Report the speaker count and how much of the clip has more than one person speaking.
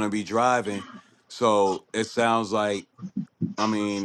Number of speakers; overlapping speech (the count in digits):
1, no overlap